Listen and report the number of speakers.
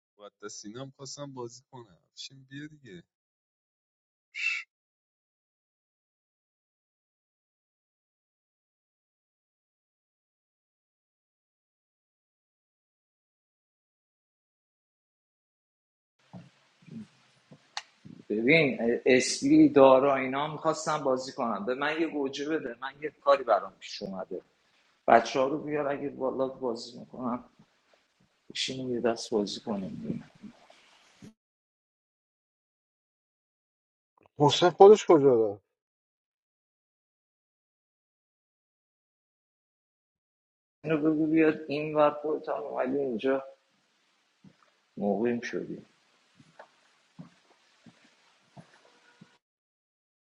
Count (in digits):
3